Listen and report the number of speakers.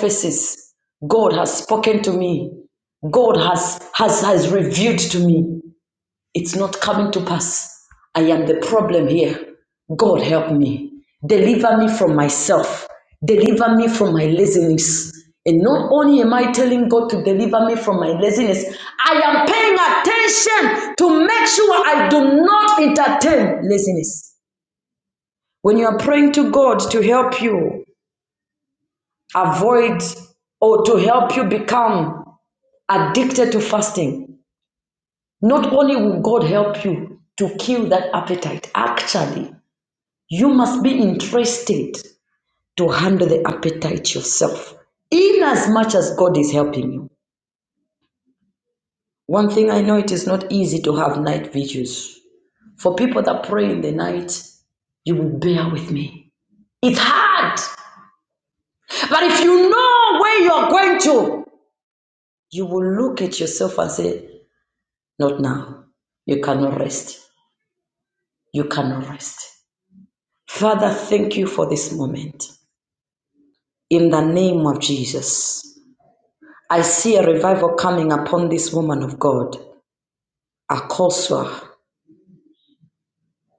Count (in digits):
1